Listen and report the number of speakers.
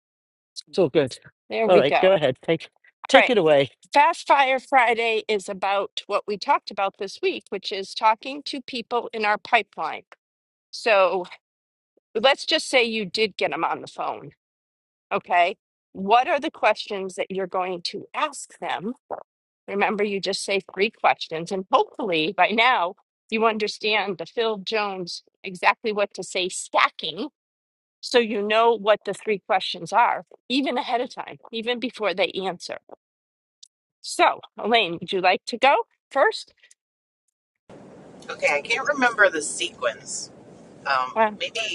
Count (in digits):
3